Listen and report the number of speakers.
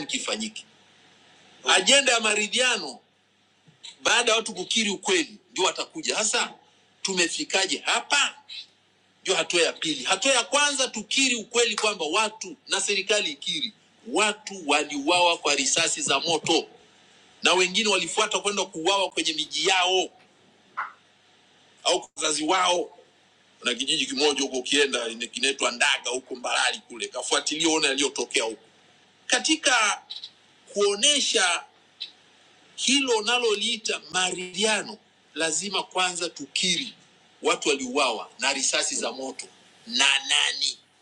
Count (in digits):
1